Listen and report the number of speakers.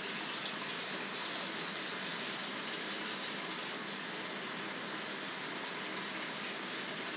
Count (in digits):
0